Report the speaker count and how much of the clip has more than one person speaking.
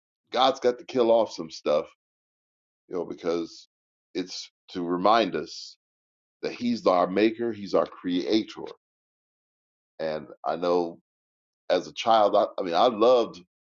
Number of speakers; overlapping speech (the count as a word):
one, no overlap